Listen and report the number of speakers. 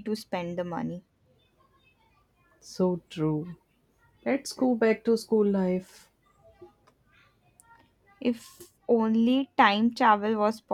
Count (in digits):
2